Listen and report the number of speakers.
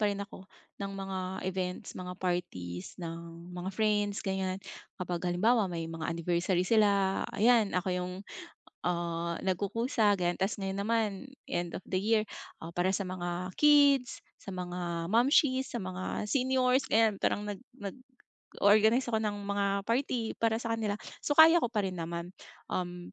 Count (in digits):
1